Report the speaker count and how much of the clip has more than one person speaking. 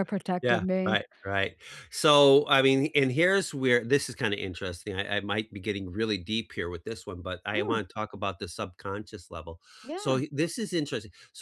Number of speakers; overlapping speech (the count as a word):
two, about 9%